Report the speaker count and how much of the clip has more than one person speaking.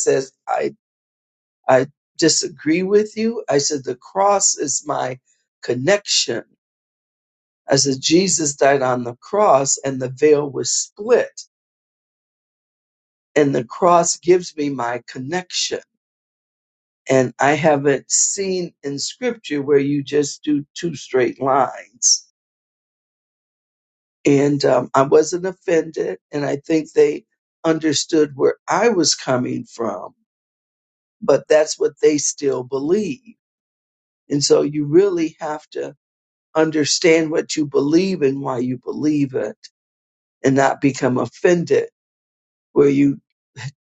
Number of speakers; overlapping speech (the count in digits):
1, no overlap